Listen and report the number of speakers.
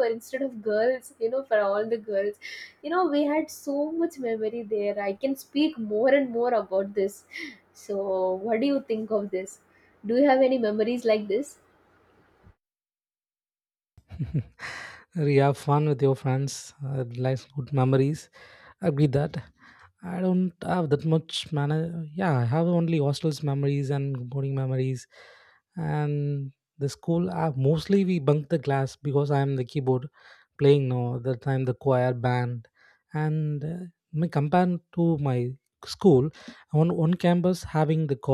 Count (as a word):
two